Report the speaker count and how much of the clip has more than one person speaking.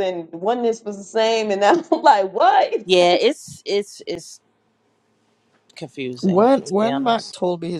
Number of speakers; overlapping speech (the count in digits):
3, about 7%